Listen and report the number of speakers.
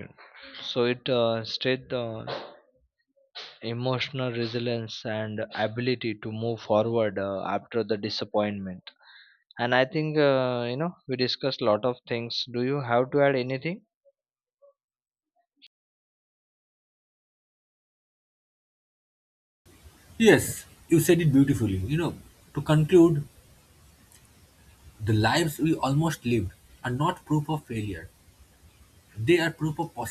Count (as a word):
two